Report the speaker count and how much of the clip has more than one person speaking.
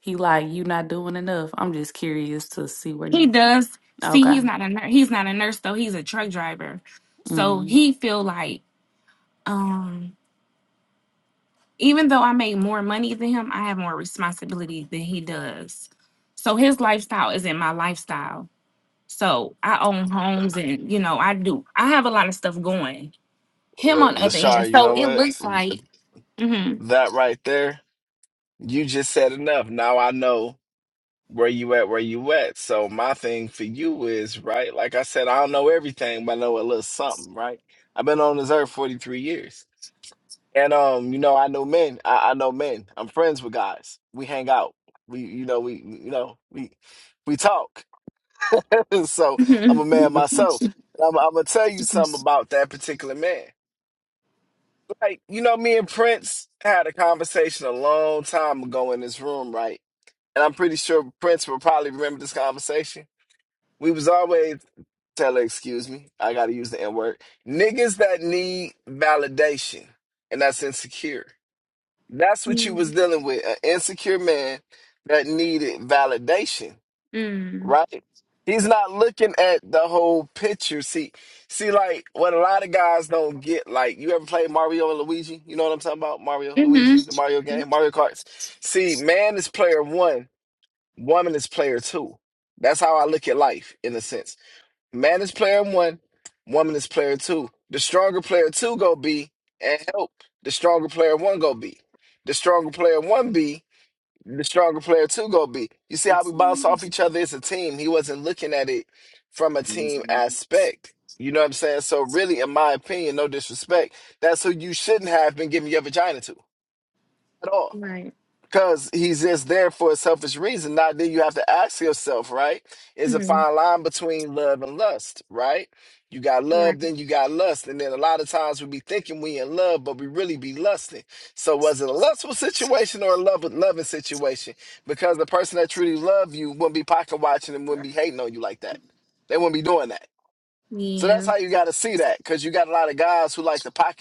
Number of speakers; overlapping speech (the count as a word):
three, about 3%